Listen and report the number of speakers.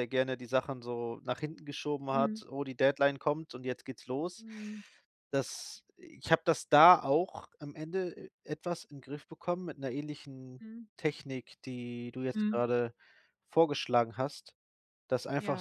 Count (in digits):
2